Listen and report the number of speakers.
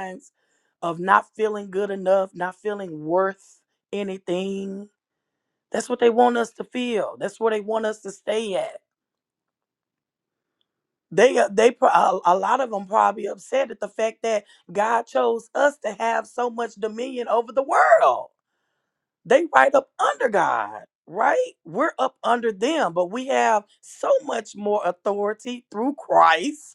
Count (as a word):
one